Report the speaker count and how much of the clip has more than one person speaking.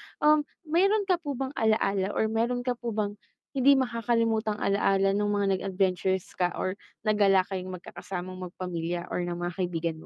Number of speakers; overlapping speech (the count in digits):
1, no overlap